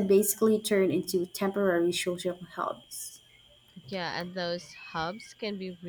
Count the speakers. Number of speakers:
2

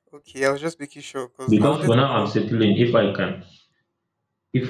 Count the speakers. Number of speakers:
2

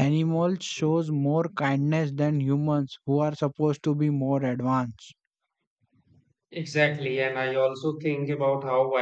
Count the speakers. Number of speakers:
2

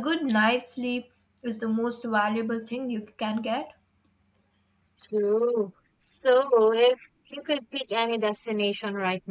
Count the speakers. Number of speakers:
2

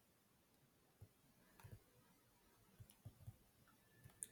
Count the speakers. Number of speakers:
0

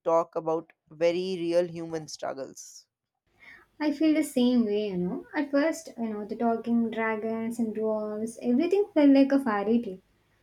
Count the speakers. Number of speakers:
2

